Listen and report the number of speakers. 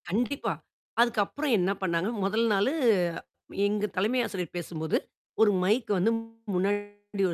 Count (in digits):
1